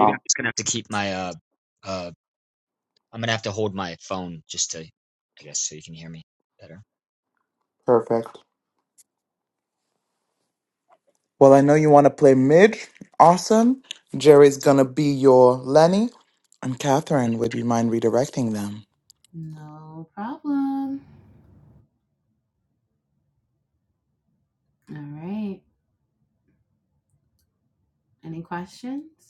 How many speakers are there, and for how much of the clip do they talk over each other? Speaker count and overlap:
three, about 1%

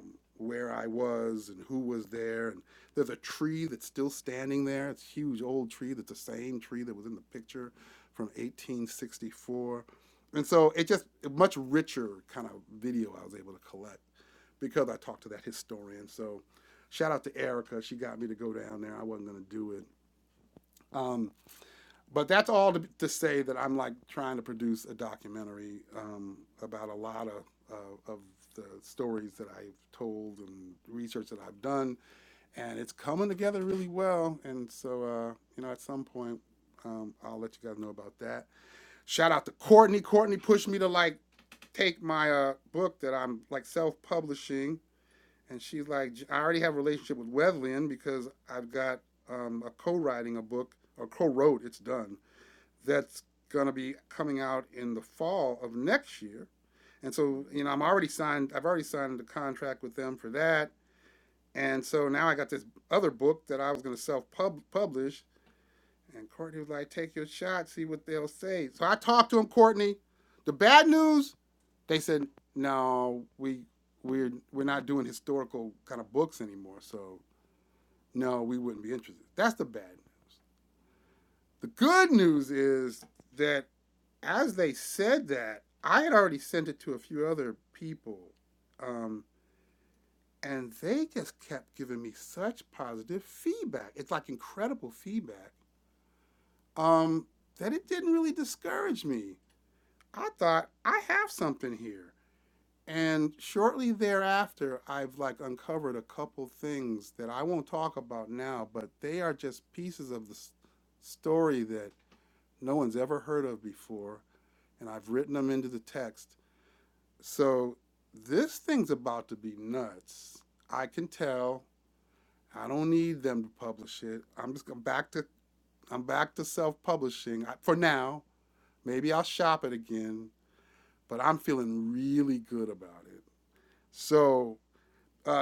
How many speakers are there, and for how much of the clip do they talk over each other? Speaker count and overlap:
one, no overlap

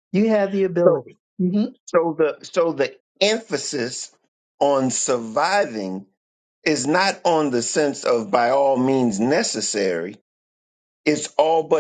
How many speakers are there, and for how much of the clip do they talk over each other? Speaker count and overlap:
two, about 2%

